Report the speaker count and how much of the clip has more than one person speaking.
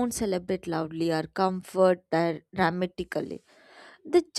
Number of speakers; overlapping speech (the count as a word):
one, no overlap